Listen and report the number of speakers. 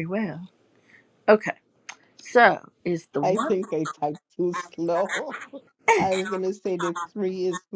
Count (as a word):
two